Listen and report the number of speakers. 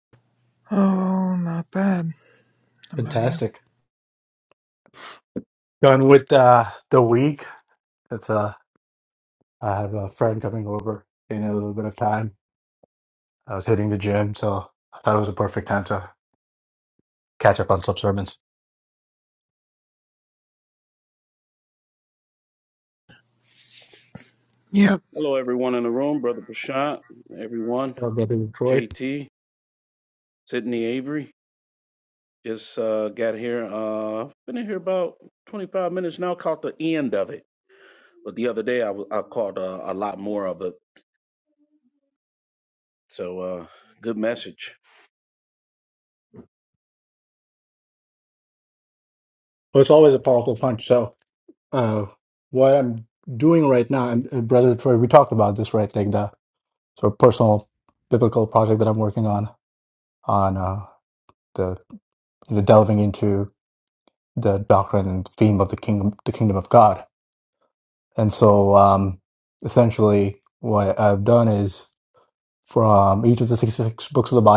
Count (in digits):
3